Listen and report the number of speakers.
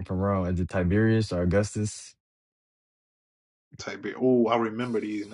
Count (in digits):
2